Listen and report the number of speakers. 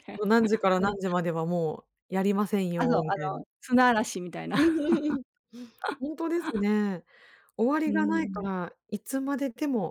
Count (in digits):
2